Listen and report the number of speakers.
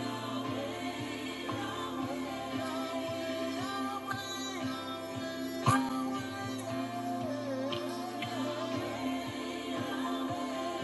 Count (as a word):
zero